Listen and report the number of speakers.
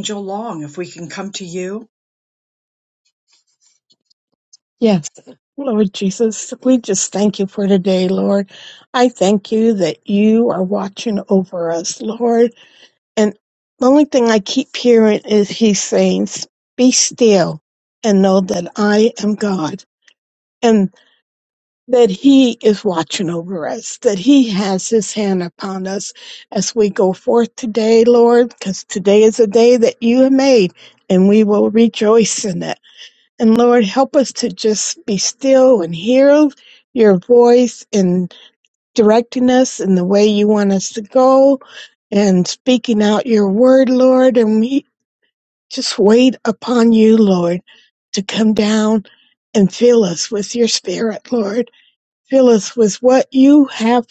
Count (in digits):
2